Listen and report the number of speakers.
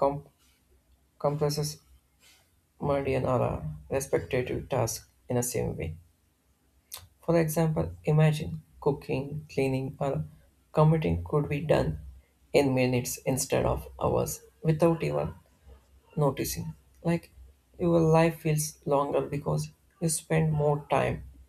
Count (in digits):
1